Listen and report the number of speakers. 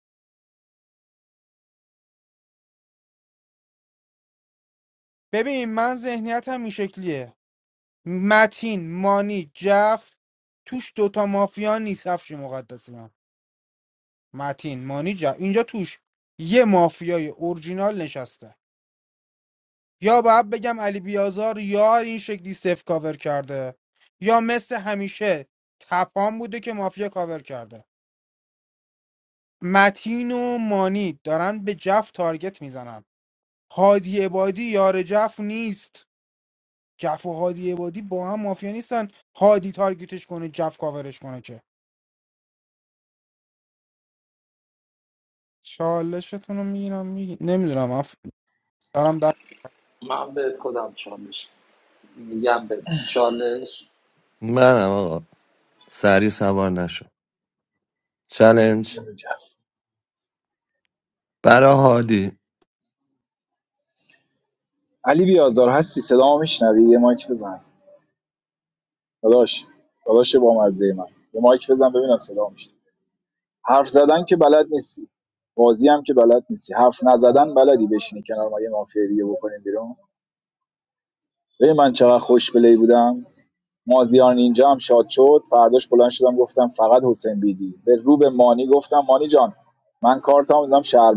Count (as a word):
four